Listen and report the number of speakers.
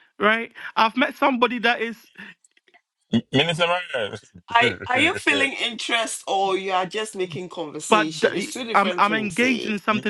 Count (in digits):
3